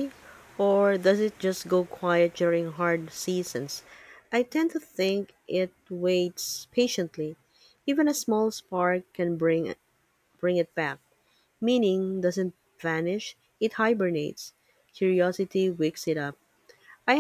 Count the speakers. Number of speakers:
1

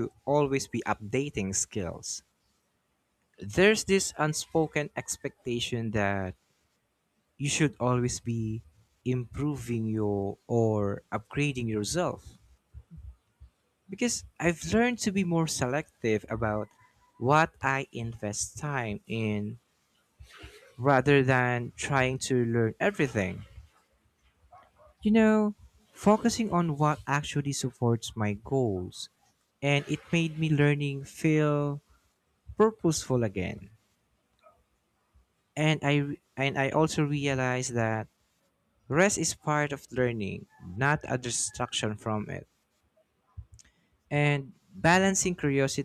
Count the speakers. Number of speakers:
1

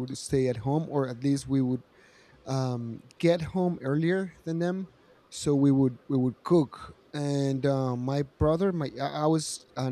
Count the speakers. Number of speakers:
1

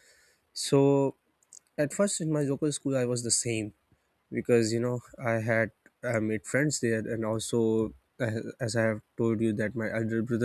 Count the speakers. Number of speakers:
1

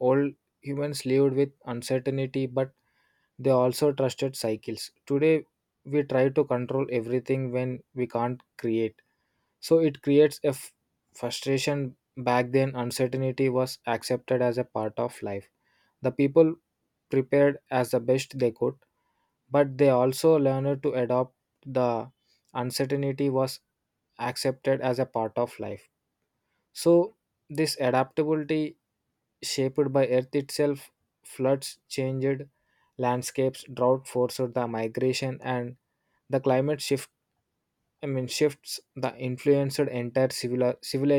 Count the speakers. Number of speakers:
1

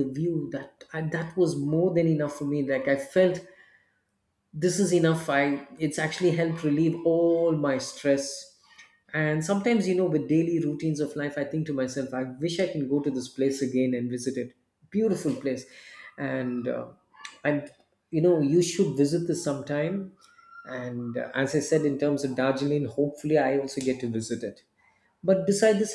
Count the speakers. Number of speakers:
1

